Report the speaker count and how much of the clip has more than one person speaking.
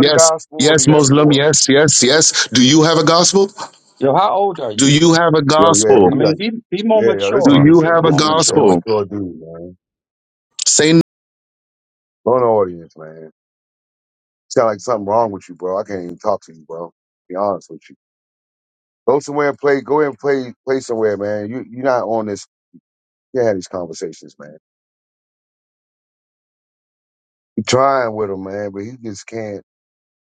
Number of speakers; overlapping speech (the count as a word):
three, about 14%